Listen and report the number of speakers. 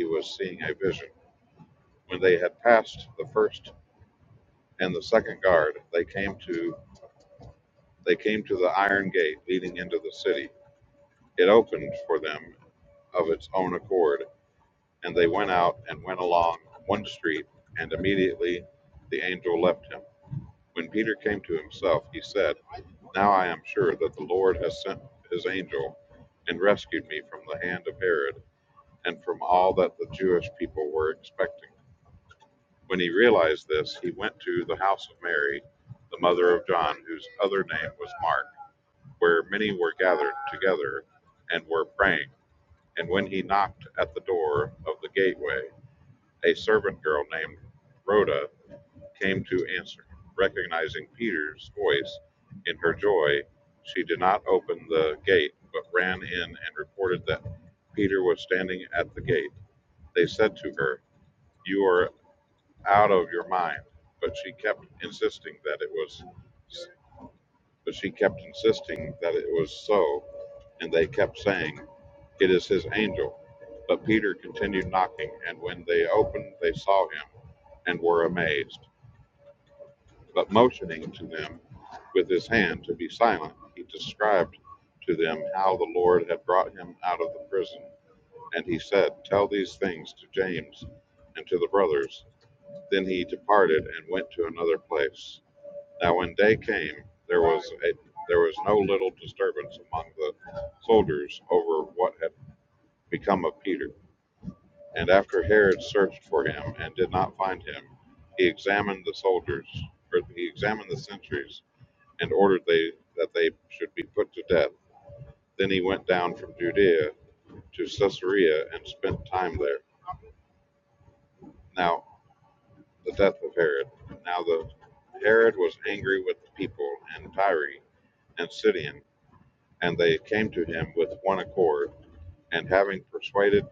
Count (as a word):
one